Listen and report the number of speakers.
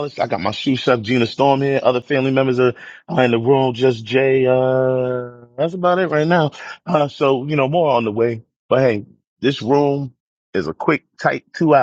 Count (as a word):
one